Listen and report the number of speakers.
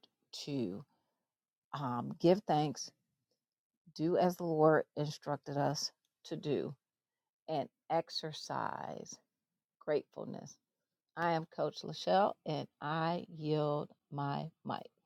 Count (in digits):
1